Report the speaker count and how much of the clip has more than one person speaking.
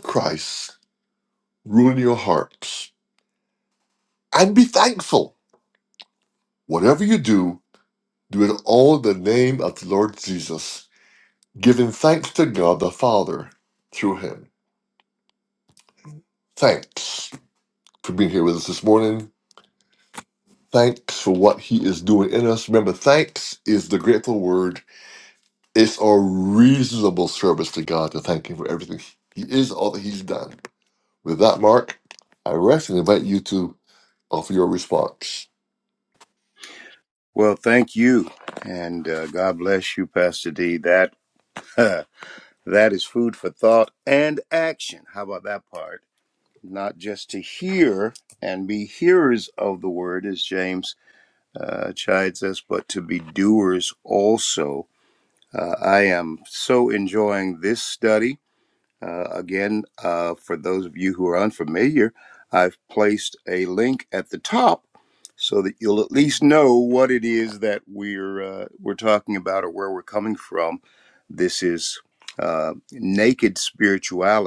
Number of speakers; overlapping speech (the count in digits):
2, no overlap